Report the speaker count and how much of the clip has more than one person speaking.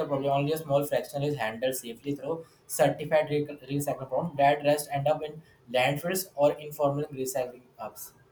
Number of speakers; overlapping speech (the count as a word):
one, no overlap